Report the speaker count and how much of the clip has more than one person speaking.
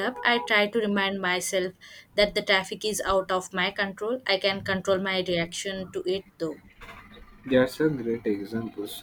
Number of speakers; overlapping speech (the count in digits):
2, no overlap